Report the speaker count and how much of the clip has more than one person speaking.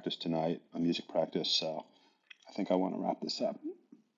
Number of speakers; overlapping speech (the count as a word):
one, no overlap